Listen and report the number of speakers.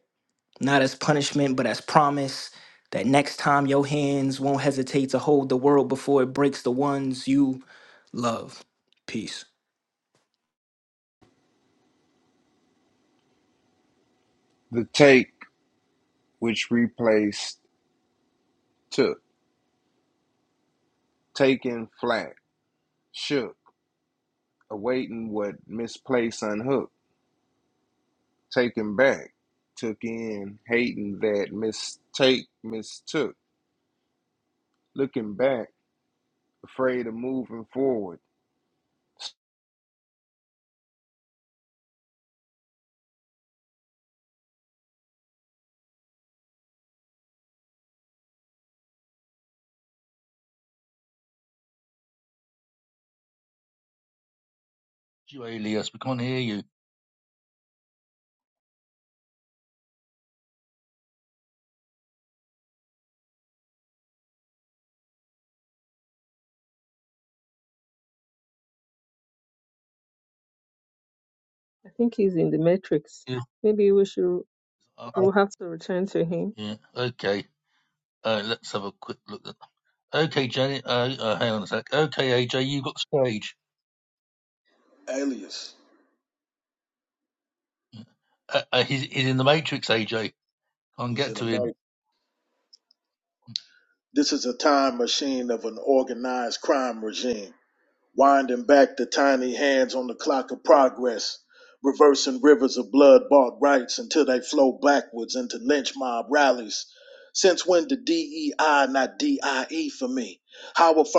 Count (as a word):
five